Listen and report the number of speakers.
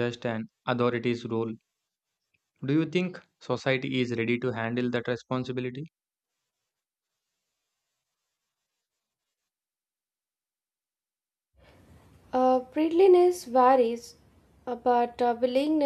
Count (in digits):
2